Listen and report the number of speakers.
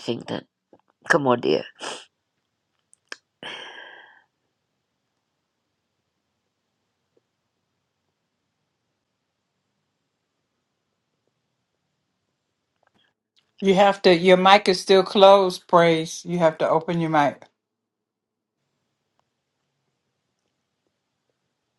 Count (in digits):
2